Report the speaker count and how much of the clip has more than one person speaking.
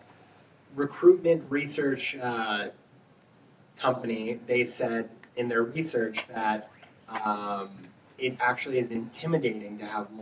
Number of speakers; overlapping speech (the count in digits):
1, no overlap